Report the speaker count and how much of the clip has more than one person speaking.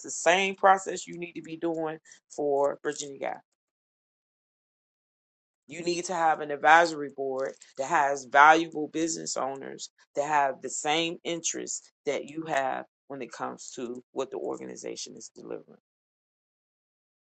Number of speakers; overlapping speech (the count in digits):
1, no overlap